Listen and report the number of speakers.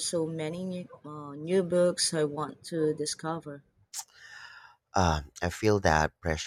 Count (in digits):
2